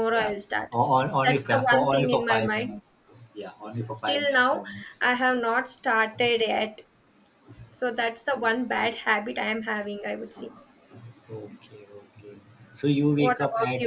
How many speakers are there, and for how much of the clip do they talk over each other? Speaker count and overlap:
2, about 24%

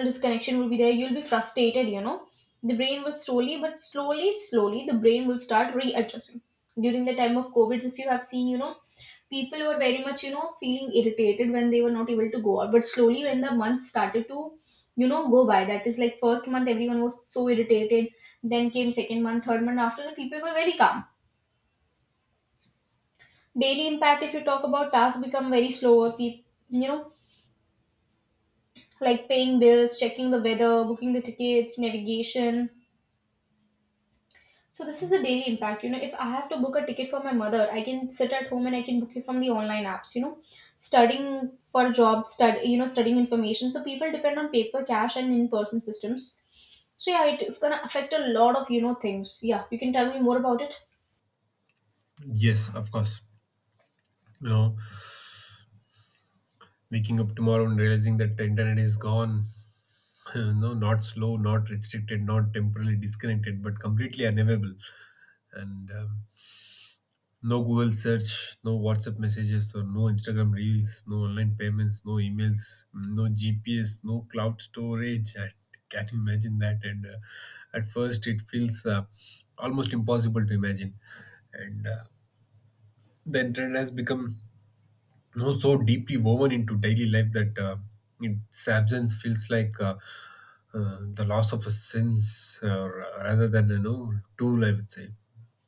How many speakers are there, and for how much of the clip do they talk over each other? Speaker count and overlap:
2, no overlap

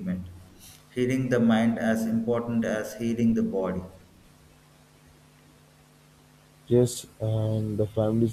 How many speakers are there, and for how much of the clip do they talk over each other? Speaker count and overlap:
2, no overlap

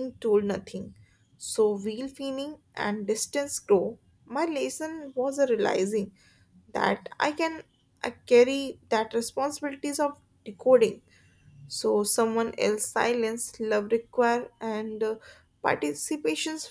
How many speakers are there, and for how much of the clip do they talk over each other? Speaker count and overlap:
1, no overlap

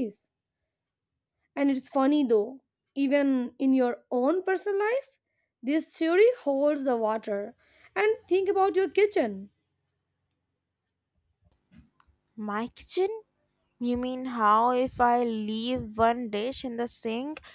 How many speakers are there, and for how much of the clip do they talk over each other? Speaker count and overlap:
2, no overlap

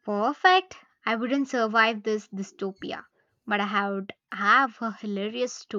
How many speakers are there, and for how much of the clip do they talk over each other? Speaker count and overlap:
1, no overlap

